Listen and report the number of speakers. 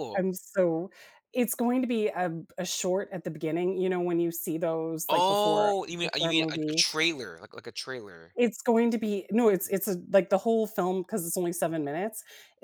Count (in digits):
2